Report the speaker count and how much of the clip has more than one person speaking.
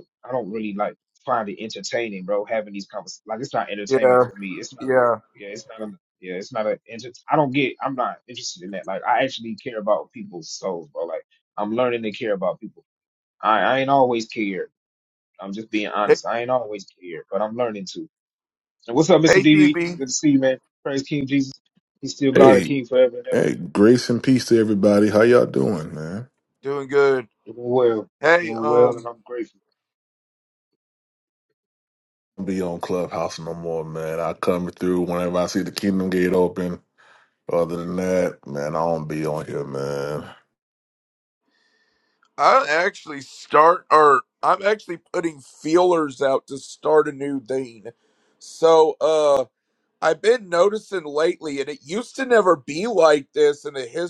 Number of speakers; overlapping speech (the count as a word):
three, about 4%